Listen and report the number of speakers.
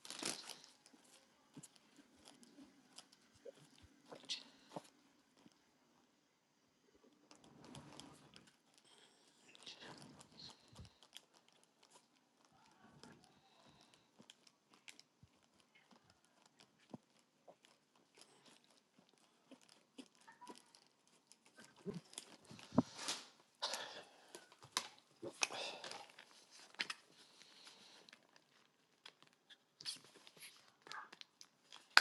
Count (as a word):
zero